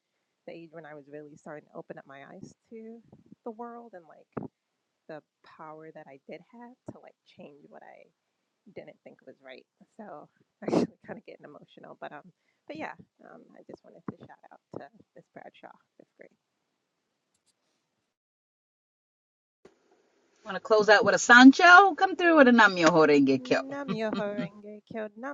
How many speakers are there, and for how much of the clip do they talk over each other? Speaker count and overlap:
2, about 1%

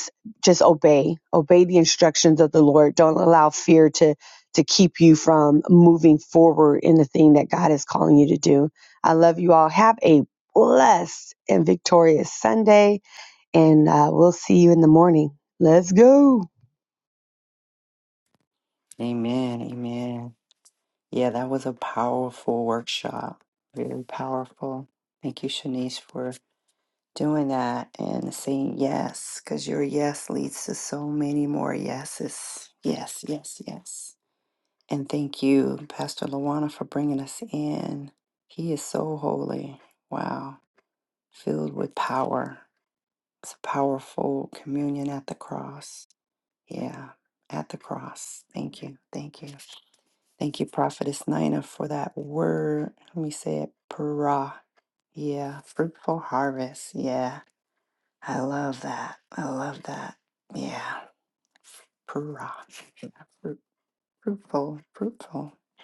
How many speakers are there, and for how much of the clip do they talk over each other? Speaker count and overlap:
2, no overlap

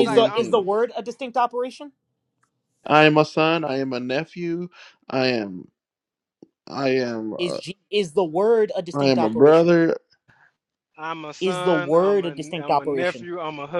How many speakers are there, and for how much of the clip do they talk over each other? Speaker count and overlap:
3, about 25%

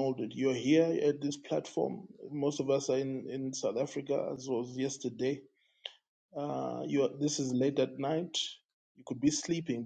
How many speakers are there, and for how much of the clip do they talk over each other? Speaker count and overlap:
1, no overlap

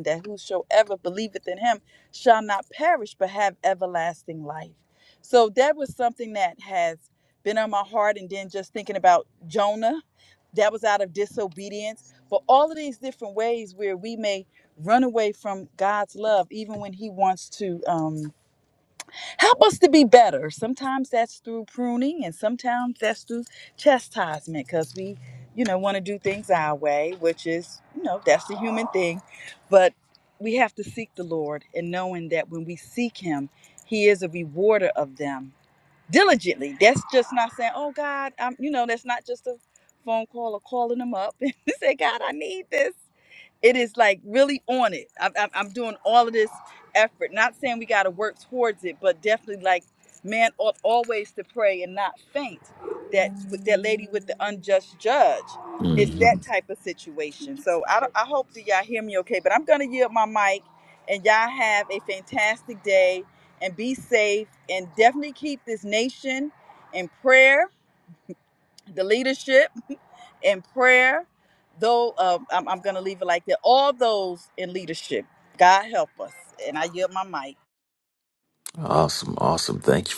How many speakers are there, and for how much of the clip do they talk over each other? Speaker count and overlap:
2, about 1%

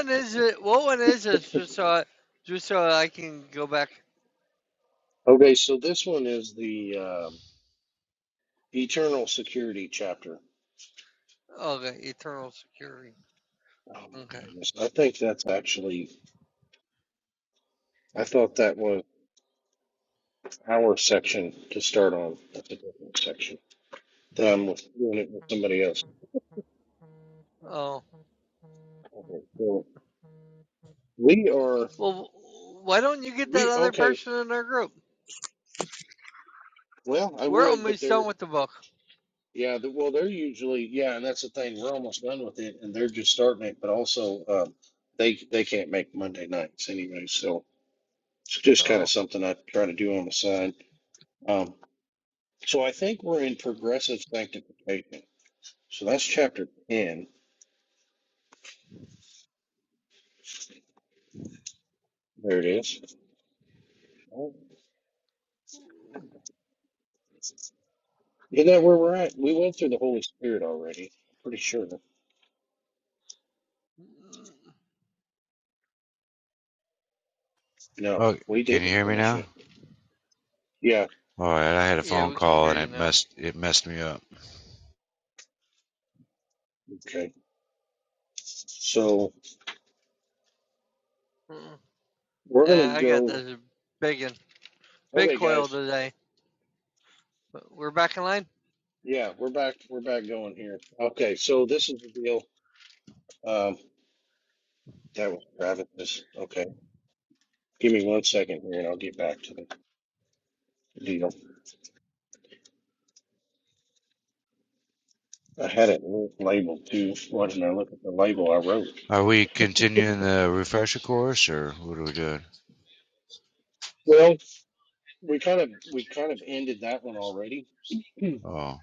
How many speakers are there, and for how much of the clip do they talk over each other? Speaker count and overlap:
3, about 4%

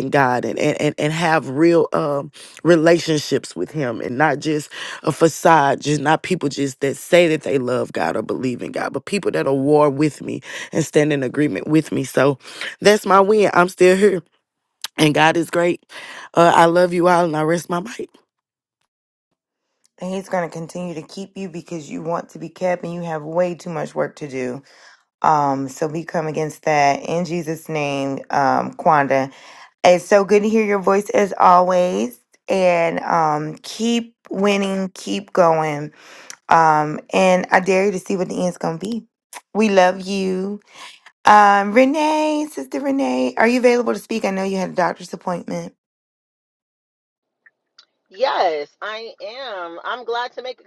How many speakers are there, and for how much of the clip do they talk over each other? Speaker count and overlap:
3, no overlap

